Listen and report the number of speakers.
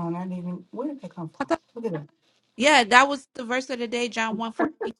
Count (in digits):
2